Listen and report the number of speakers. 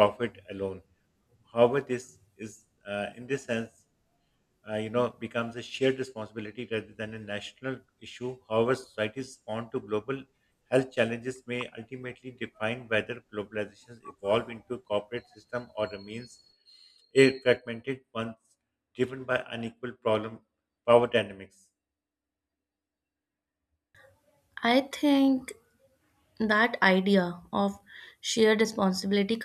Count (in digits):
2